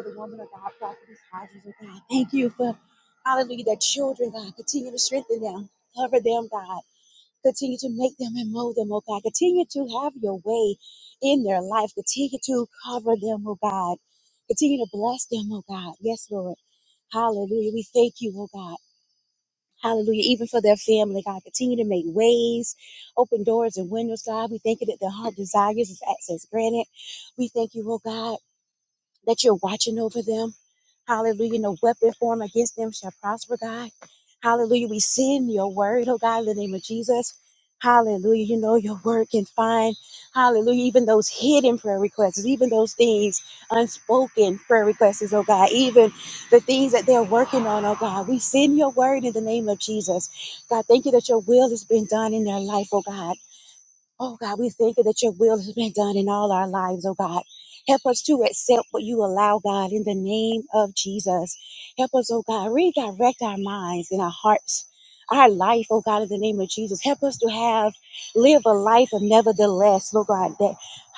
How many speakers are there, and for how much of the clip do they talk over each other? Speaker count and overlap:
1, no overlap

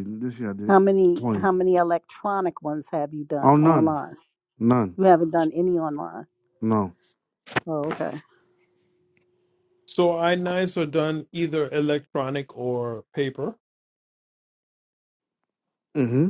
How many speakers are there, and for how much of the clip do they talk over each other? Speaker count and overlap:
3, about 6%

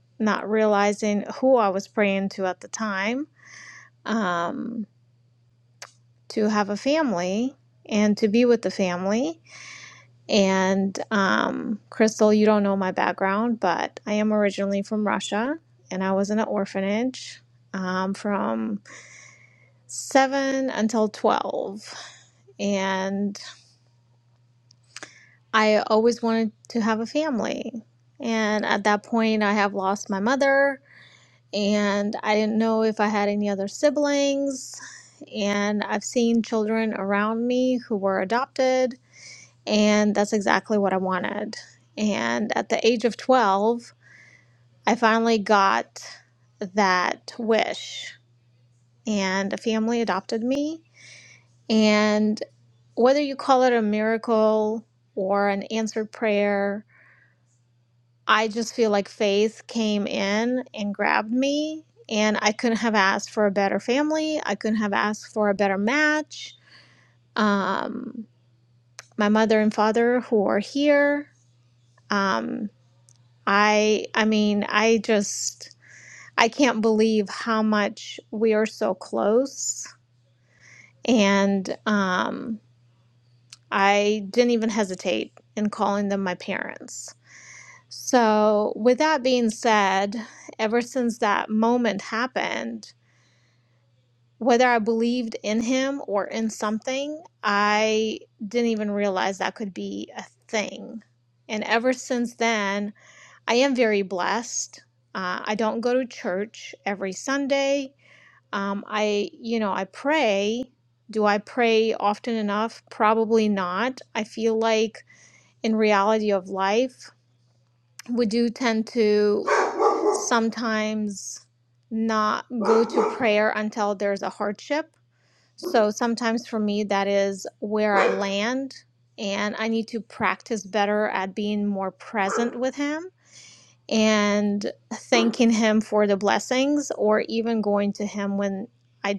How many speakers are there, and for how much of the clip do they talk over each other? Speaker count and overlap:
1, no overlap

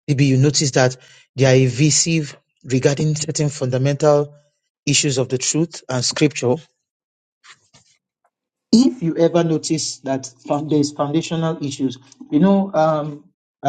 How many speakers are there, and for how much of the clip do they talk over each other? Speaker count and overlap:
1, no overlap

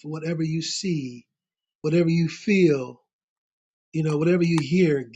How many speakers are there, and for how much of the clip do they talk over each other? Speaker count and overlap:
1, no overlap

